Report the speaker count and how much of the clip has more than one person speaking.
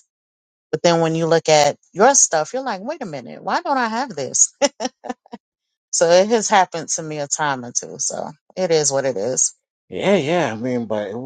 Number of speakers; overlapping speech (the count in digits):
2, no overlap